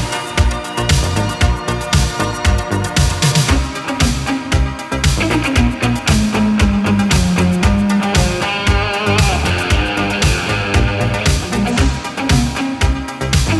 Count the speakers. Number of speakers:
0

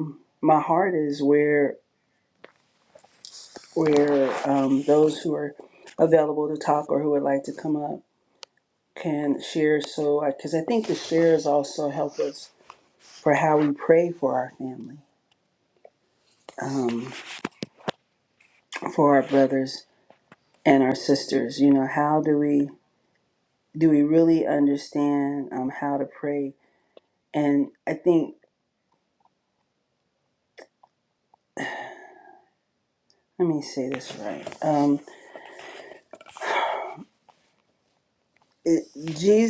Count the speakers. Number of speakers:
1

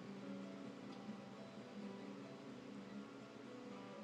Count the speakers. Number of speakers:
0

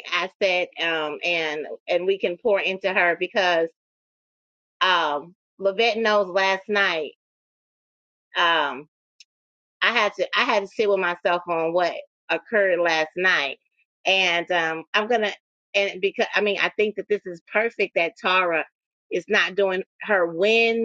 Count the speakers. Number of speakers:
1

